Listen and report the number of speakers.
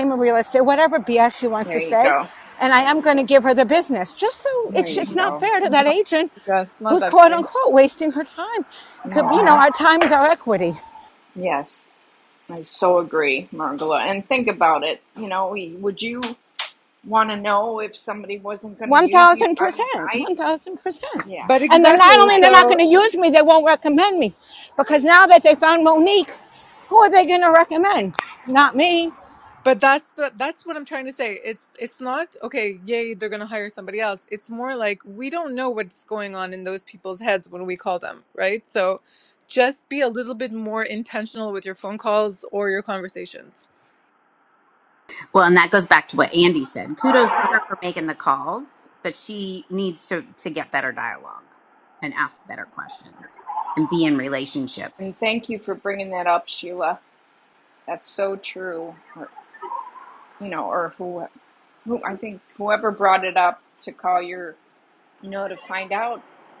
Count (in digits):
4